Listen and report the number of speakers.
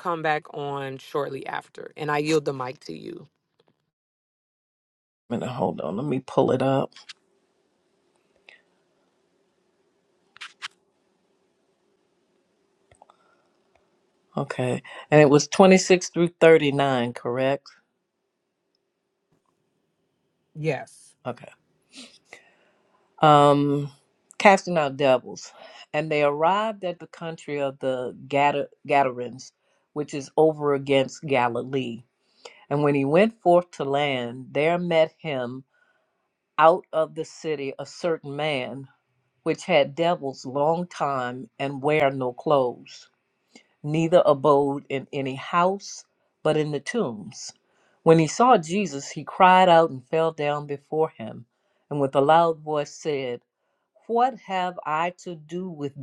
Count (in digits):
2